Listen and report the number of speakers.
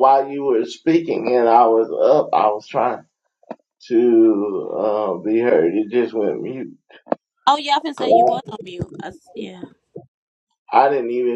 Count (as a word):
two